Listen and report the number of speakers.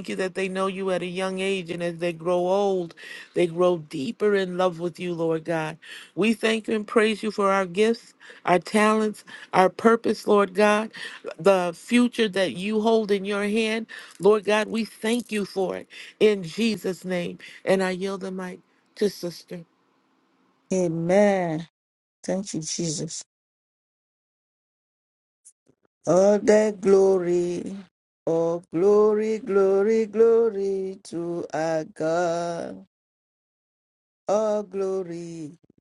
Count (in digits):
2